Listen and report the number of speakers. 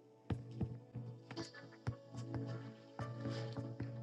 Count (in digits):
0